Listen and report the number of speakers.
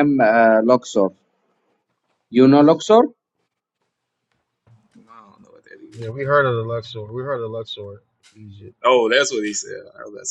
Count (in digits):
3